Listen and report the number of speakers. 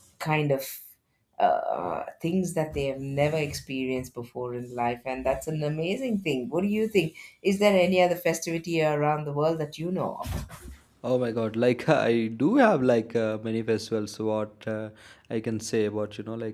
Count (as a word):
two